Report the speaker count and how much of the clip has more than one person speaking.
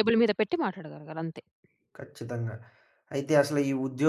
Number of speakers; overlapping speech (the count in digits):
2, no overlap